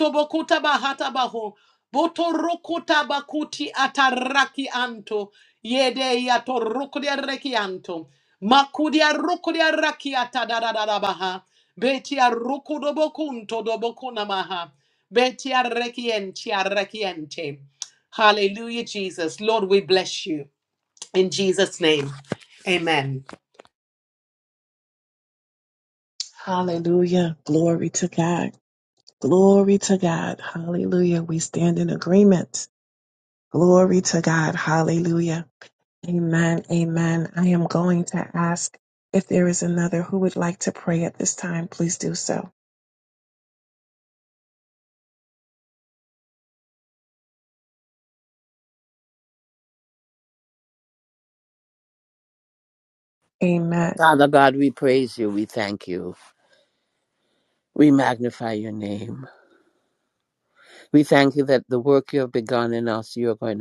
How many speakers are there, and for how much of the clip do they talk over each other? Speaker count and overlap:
three, no overlap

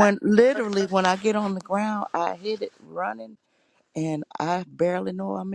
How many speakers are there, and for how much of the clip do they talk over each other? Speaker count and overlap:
one, no overlap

